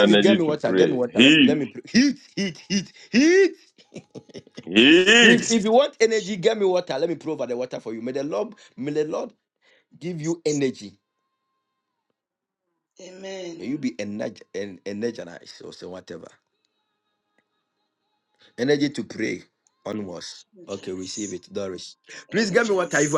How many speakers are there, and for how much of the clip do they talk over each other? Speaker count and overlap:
three, about 13%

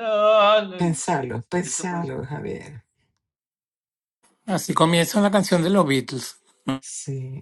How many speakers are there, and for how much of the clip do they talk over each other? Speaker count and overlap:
three, about 14%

